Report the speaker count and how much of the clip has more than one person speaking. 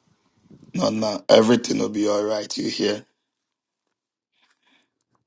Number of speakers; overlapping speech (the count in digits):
1, no overlap